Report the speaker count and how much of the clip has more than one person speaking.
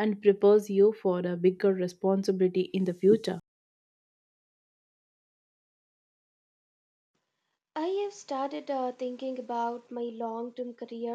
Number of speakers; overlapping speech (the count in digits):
2, no overlap